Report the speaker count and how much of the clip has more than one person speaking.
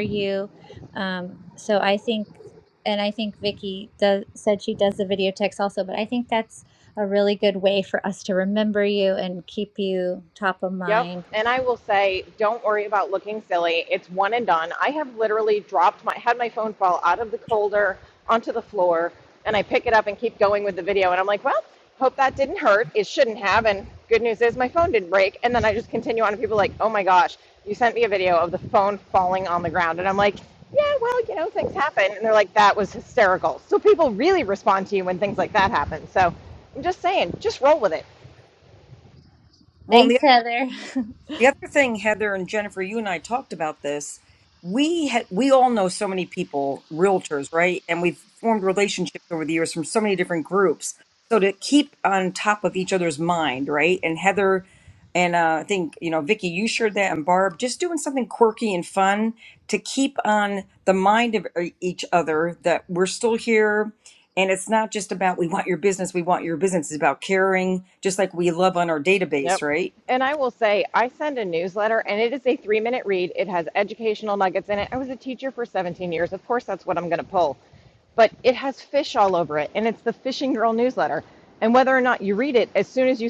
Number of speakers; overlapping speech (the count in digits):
3, about 1%